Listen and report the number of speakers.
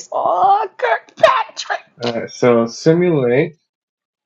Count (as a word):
two